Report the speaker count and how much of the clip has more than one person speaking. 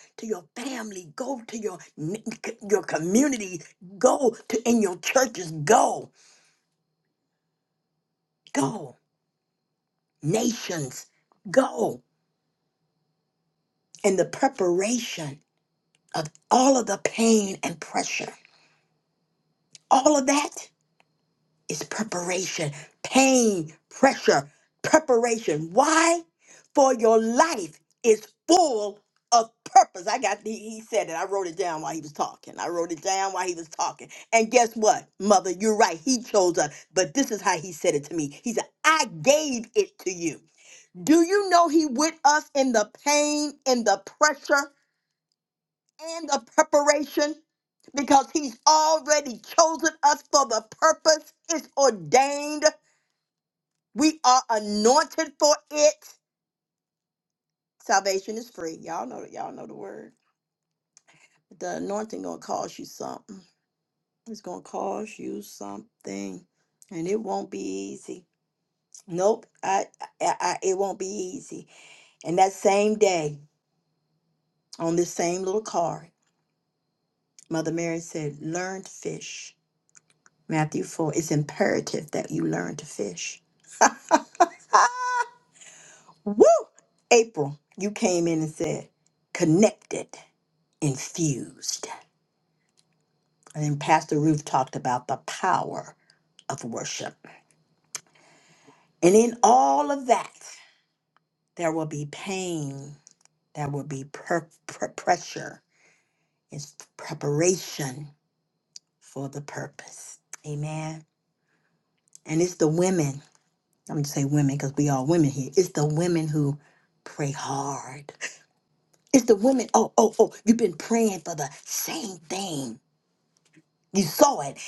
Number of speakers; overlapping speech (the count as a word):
one, no overlap